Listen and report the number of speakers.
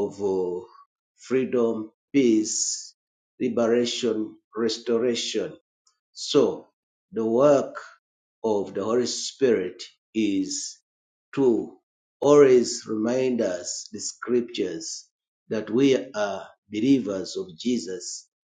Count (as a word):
one